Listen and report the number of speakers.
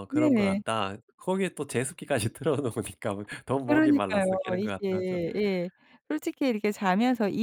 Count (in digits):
2